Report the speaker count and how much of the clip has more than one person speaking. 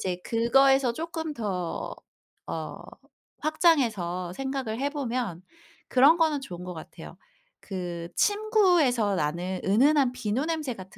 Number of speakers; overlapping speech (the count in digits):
1, no overlap